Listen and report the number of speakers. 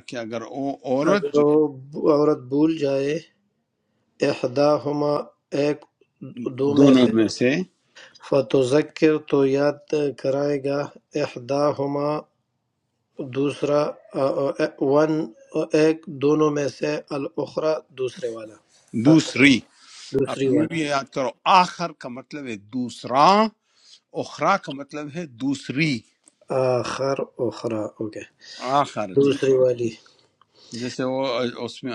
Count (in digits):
2